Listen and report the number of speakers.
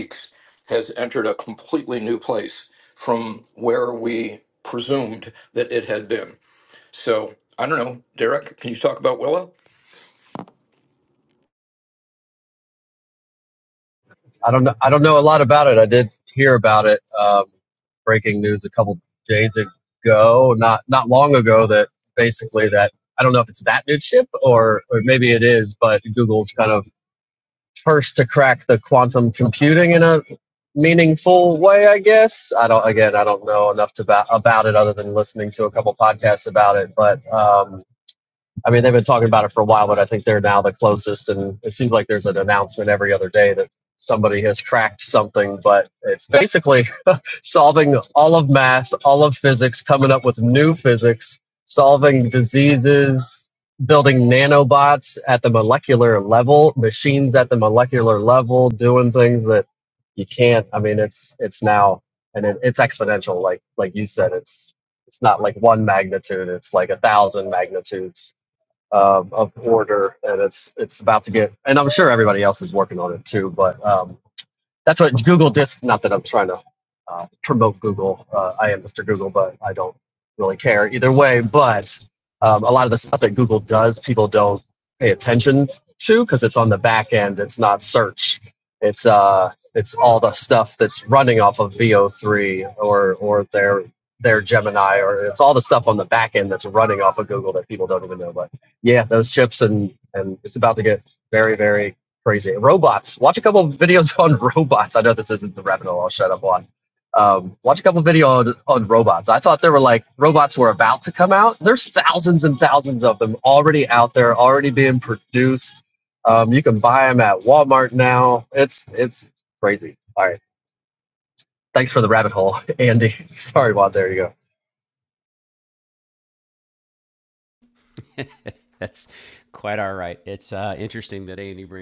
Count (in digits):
3